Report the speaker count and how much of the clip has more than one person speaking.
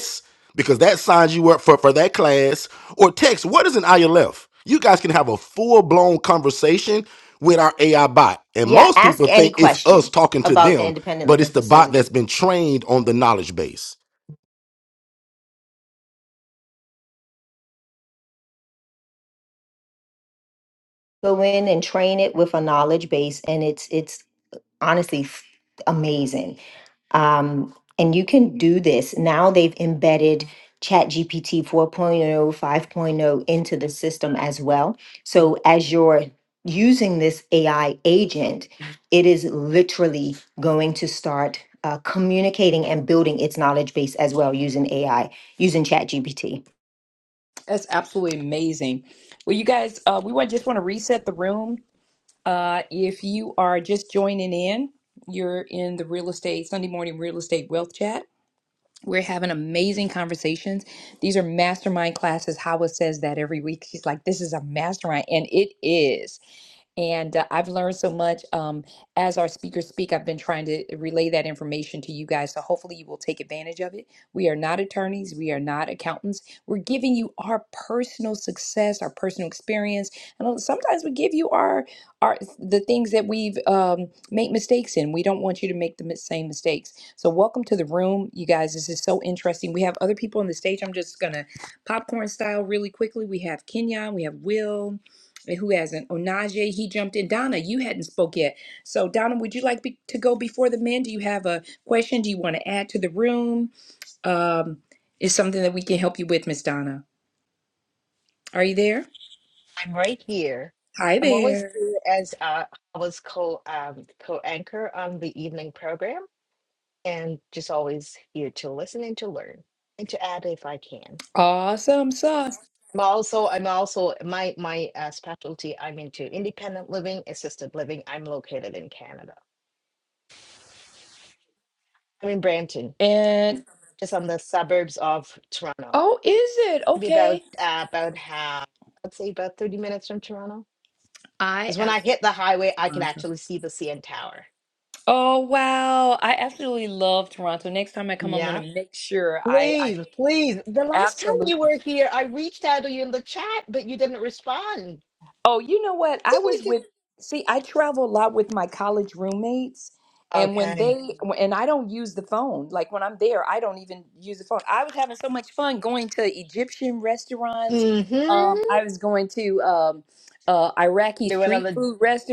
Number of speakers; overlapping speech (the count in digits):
4, about 4%